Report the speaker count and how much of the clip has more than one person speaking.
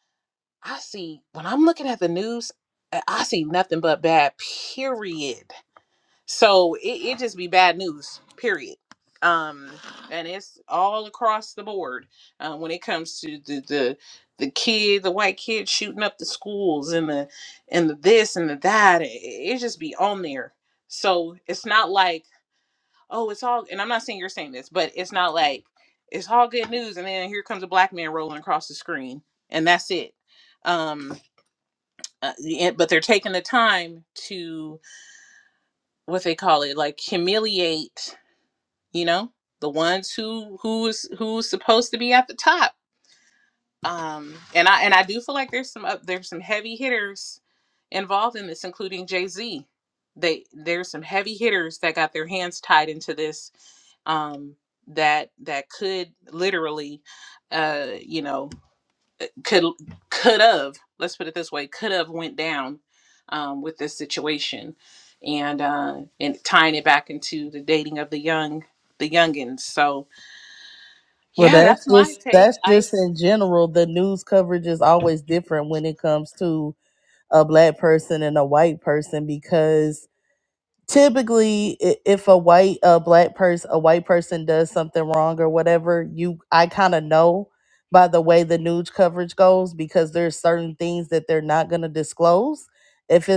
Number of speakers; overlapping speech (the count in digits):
2, about 2%